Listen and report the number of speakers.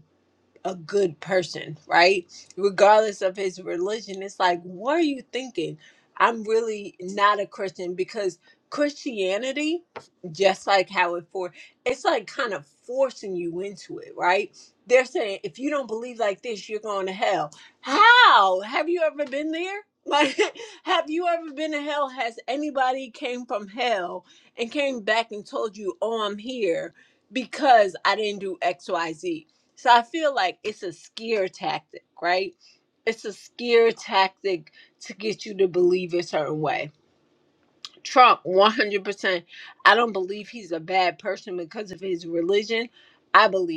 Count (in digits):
1